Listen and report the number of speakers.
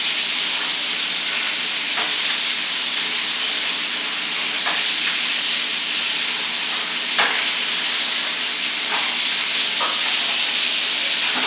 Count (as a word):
zero